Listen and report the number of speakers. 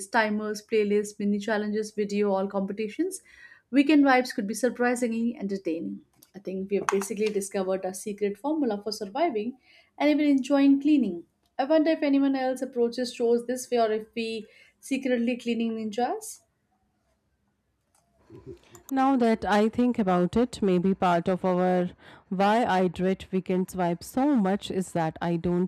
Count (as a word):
two